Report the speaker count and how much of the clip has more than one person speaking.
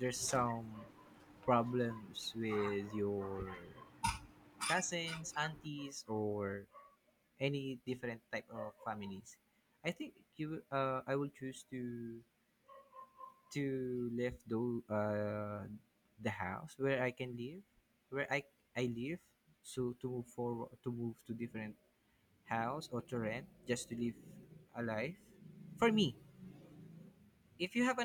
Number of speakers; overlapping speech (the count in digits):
1, no overlap